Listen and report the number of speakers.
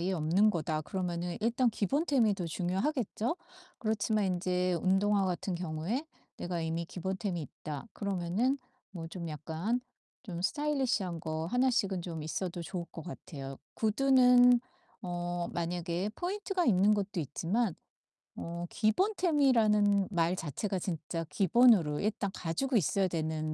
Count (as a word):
one